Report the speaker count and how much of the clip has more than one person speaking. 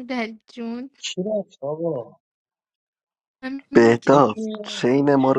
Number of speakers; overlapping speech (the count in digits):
3, about 19%